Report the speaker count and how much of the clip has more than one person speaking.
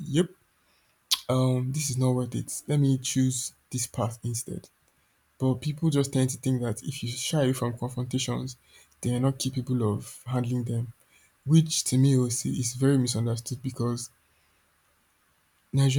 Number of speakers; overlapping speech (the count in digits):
1, no overlap